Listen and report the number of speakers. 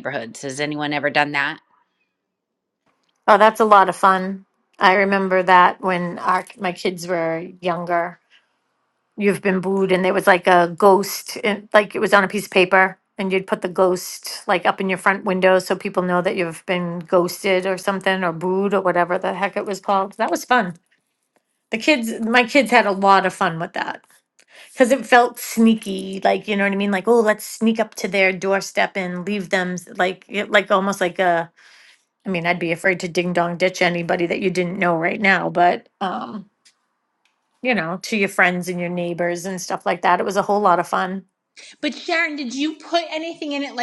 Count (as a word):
three